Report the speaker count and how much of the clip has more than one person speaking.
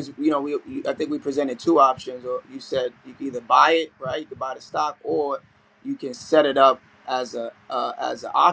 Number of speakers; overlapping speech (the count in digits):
1, no overlap